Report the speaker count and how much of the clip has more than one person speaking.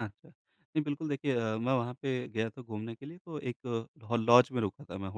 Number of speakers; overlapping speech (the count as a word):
one, no overlap